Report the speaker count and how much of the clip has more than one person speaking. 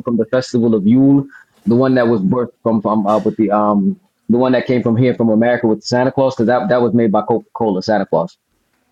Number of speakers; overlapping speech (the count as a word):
one, no overlap